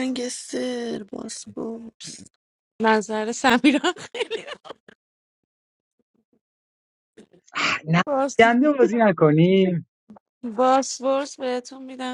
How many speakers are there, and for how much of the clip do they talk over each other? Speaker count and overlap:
3, no overlap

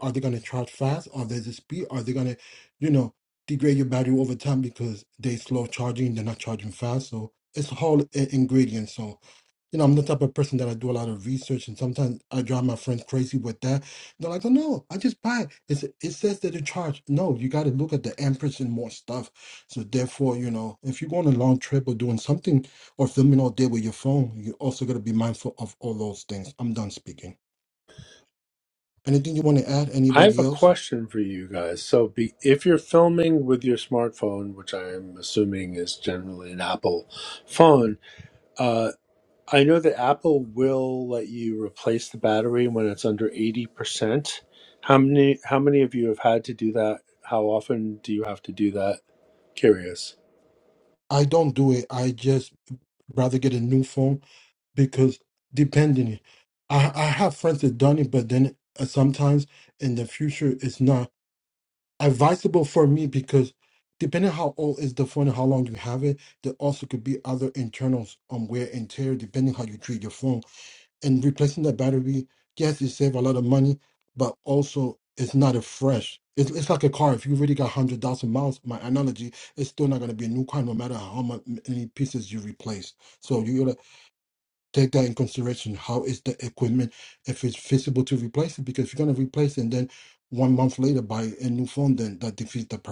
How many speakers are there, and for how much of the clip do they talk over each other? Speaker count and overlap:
2, about 1%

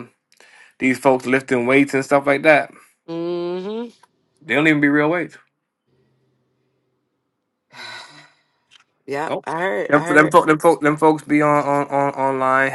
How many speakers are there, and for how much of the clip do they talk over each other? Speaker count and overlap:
2, about 4%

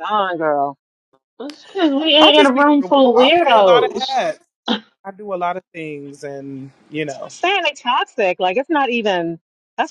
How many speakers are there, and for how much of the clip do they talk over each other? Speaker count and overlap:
3, about 20%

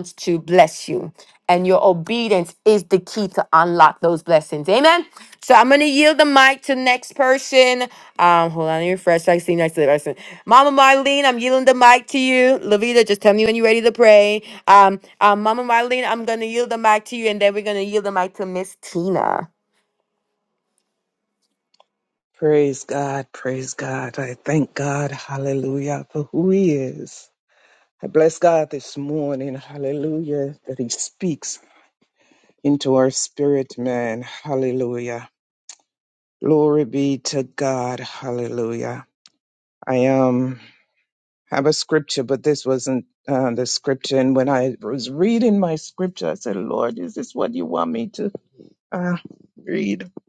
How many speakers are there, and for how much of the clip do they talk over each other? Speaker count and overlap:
2, no overlap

